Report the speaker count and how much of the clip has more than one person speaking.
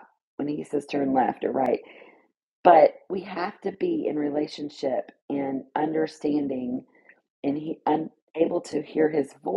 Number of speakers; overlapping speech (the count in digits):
1, no overlap